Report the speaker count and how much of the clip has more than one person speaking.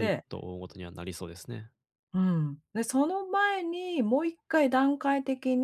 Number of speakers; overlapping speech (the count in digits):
2, about 4%